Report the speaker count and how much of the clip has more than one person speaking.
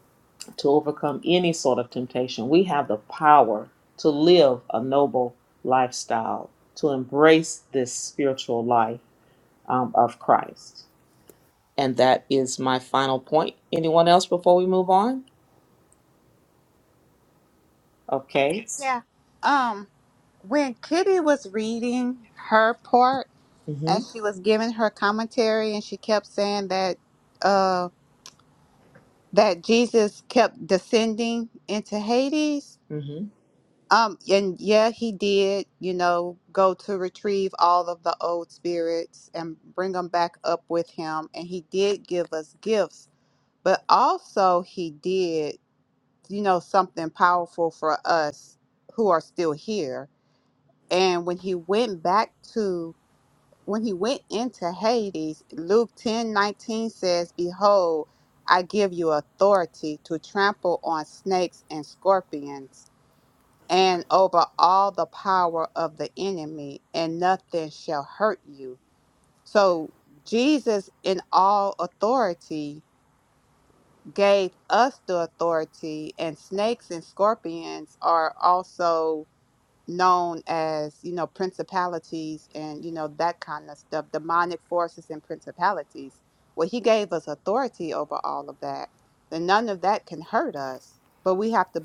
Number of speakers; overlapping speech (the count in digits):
2, under 1%